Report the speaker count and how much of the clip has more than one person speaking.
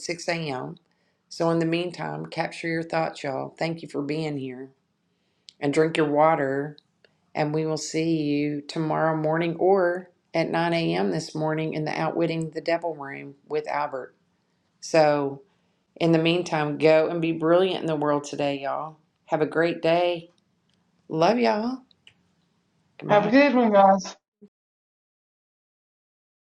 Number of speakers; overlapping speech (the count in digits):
2, about 1%